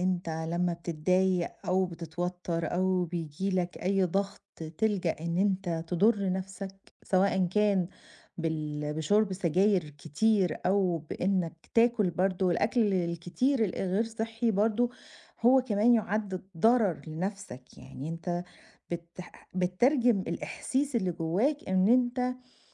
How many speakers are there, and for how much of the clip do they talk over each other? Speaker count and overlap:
1, no overlap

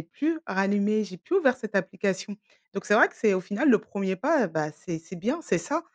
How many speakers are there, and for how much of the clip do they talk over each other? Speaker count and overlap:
1, no overlap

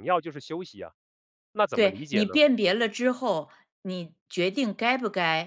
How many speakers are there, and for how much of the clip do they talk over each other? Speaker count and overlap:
2, about 11%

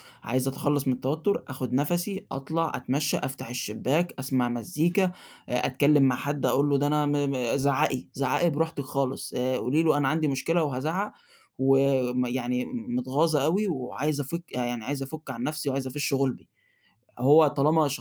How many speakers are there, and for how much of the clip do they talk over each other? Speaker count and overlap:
1, no overlap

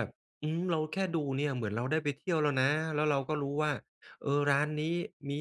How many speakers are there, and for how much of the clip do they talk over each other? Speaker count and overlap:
1, no overlap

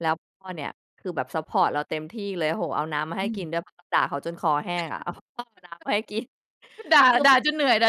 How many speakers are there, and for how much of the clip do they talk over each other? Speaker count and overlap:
2, about 4%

